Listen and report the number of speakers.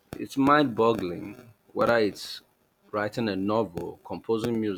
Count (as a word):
one